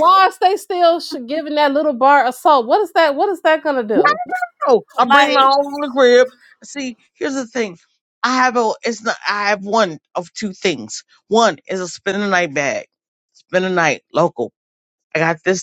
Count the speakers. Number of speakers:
2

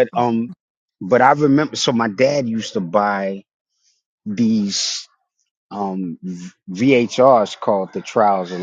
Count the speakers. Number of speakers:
1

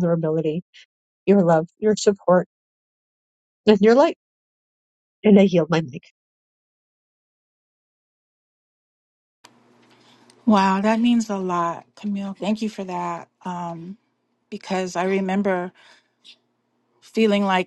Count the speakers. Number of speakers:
2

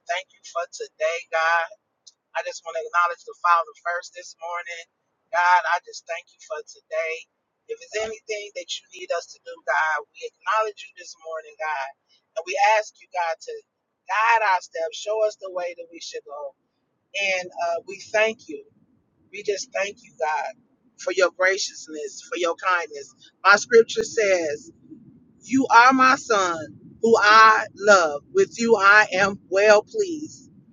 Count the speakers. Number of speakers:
1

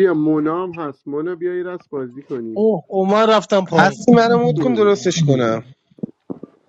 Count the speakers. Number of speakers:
3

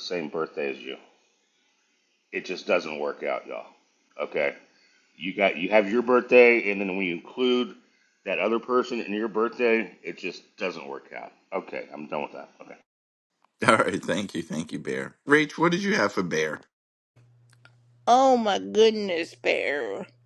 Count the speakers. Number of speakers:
3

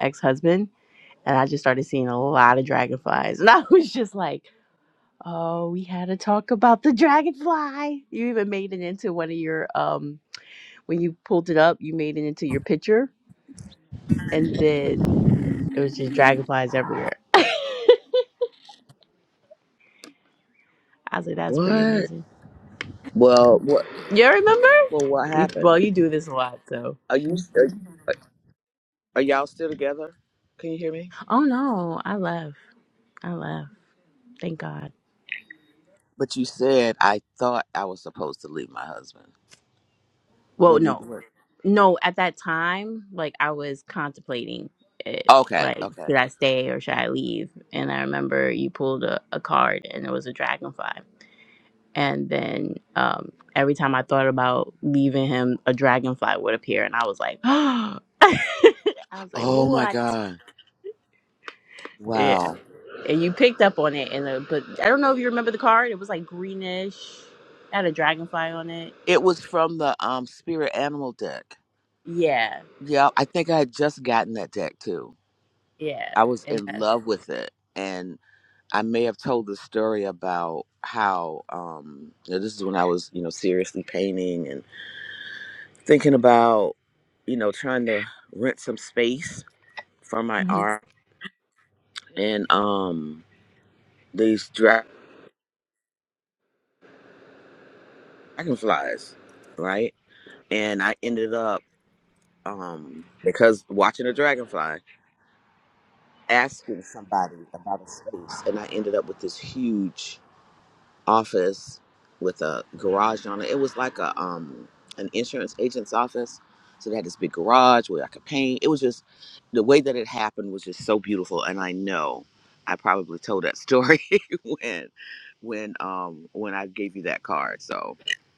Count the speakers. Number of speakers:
2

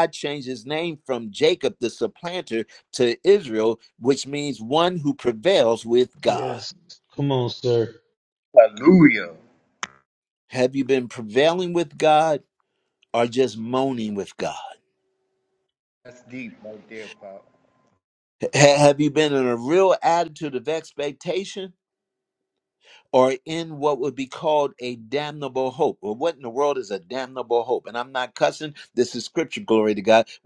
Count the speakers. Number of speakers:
3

